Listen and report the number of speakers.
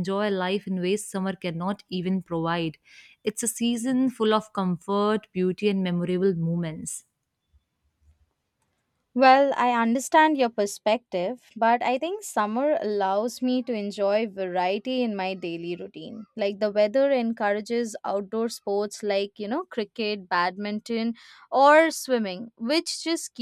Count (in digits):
2